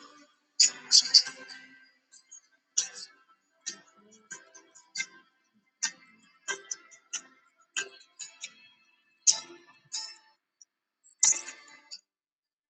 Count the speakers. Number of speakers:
zero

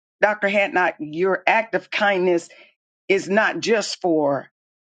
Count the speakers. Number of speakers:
one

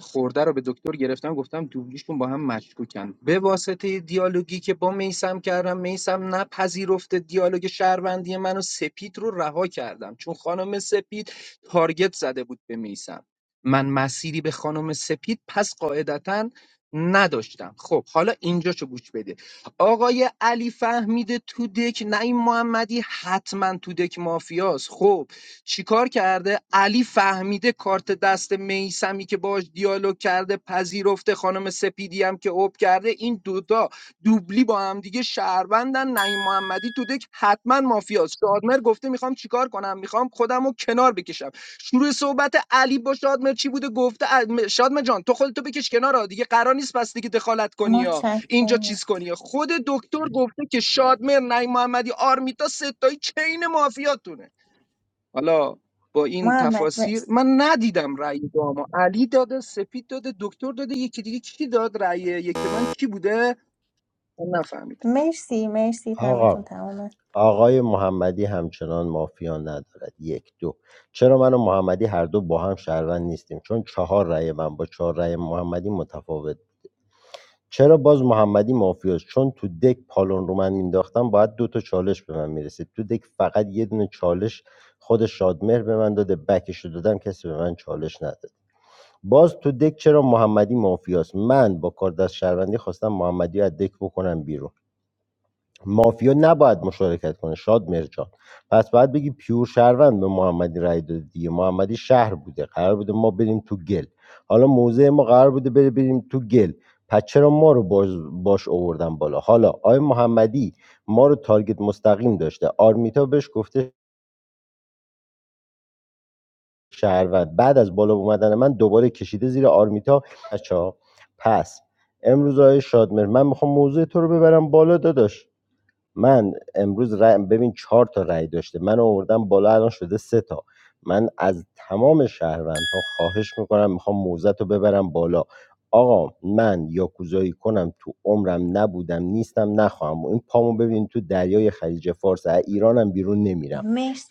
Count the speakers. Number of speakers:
three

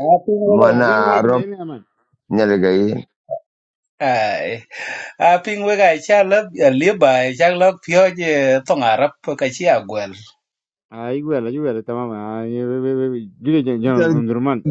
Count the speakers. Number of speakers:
three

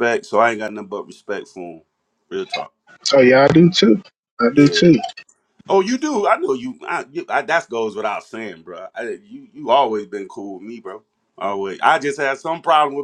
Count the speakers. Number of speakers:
two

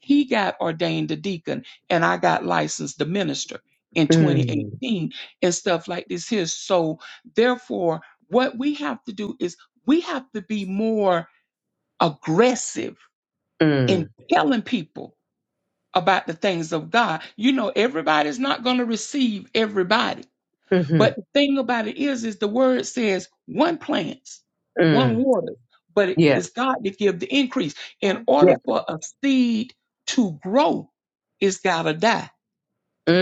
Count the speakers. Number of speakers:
two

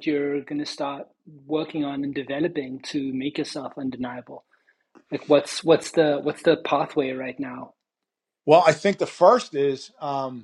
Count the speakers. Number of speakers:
two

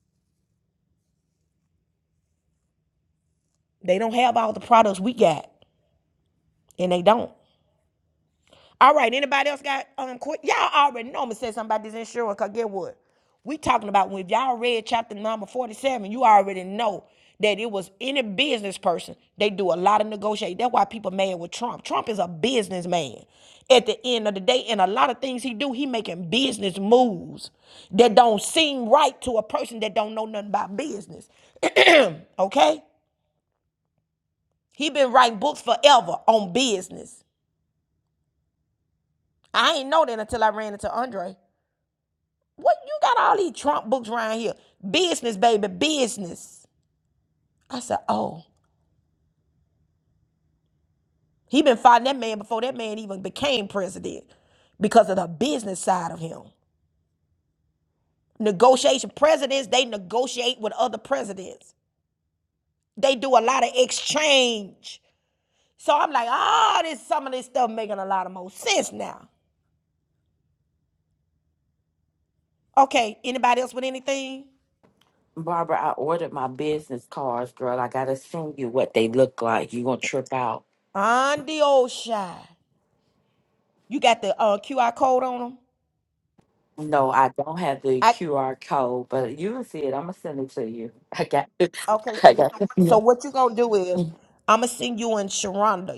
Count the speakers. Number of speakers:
two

